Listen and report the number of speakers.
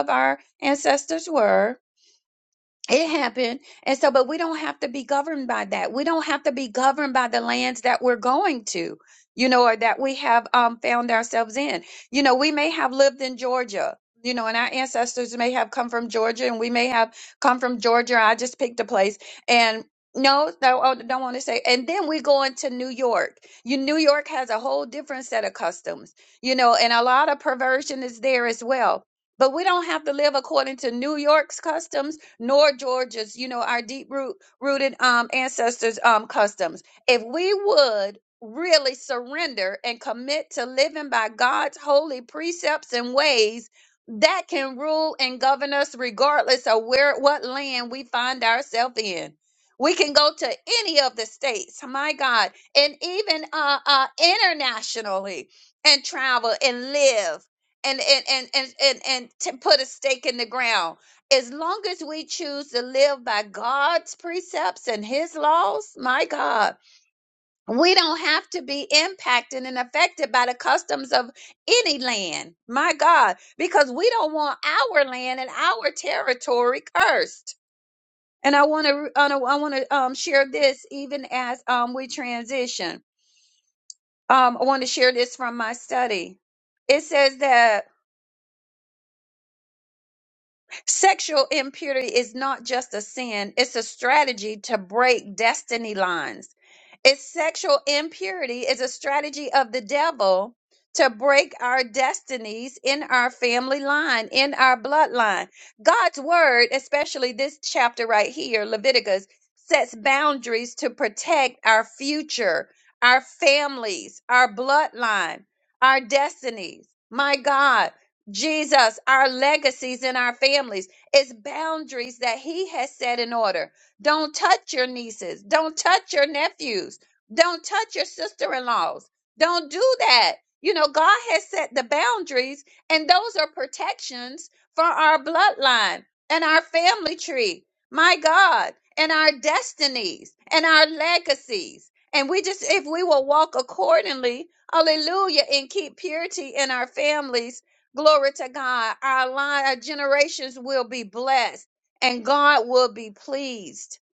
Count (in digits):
1